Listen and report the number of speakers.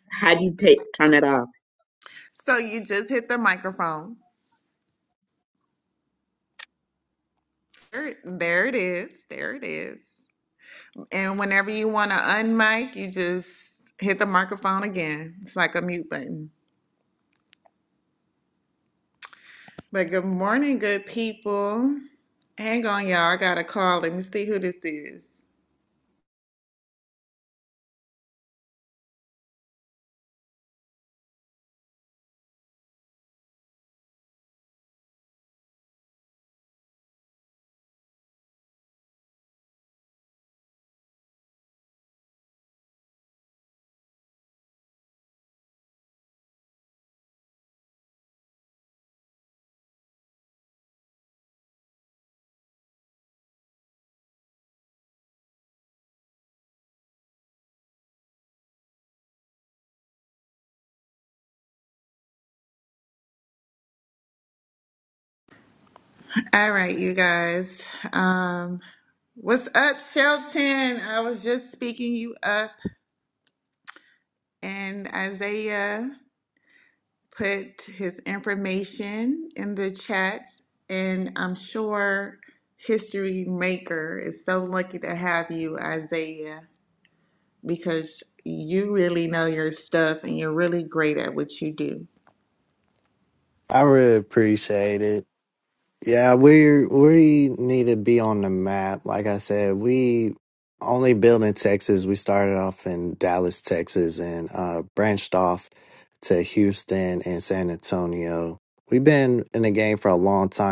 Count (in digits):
3